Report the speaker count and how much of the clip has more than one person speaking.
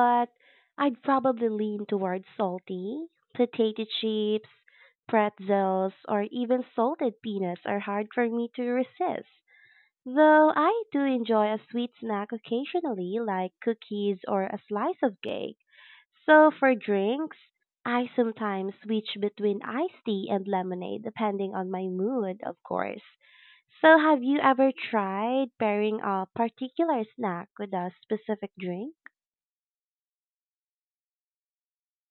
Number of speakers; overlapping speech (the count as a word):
one, no overlap